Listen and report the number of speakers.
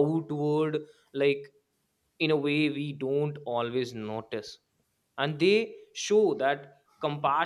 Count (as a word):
one